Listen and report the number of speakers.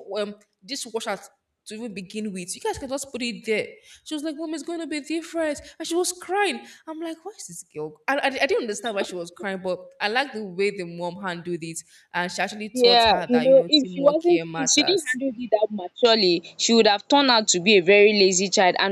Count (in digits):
2